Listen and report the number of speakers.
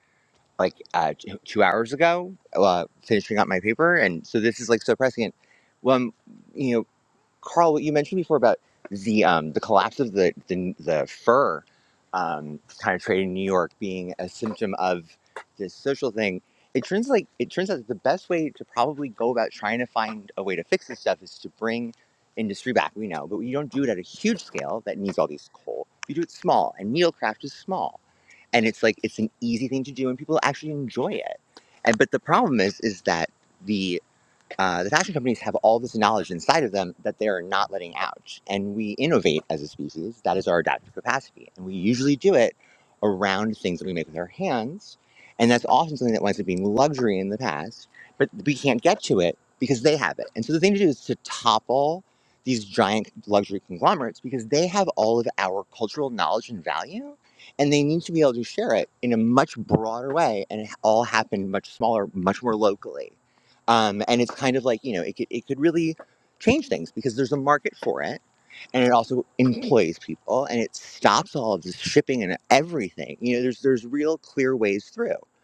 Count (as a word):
one